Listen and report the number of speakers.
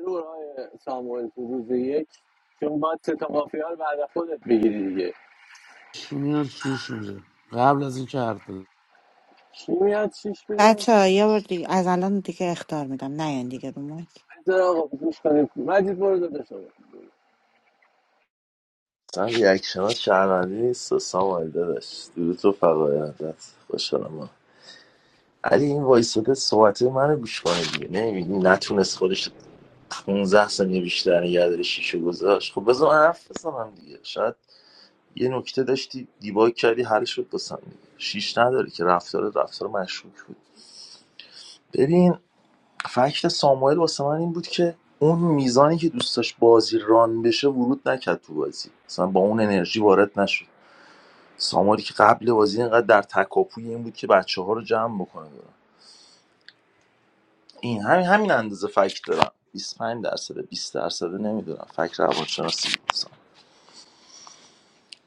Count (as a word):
four